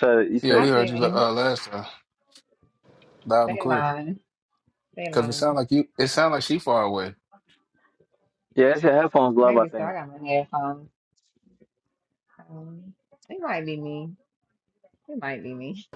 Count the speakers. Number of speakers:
three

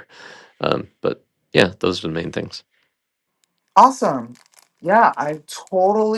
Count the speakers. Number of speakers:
two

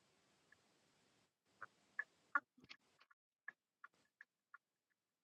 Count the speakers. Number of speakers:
zero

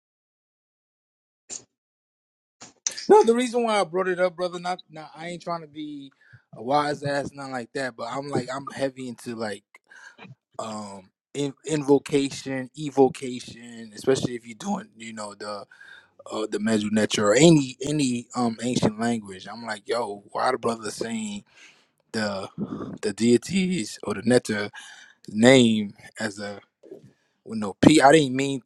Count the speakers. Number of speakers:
one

